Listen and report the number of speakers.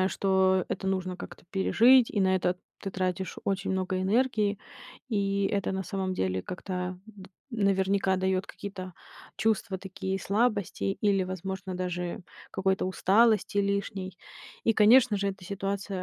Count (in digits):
1